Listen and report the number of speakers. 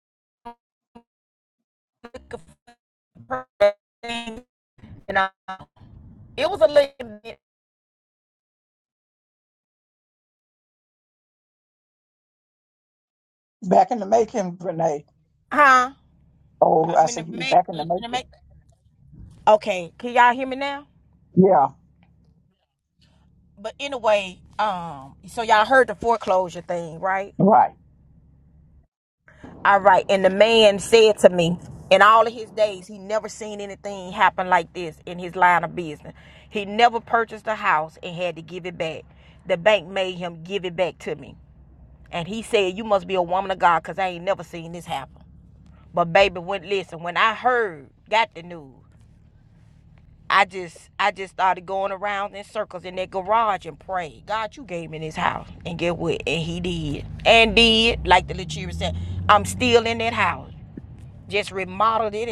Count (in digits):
2